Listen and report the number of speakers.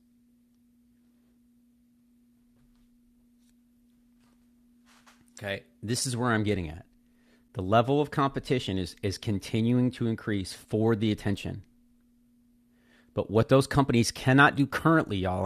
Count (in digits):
1